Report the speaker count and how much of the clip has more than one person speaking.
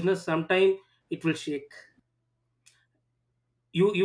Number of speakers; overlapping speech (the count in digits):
1, no overlap